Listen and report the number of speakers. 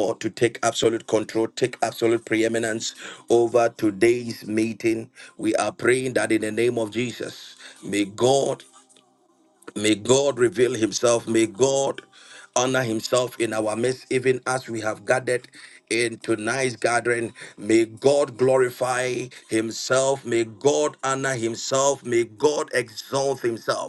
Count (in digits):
1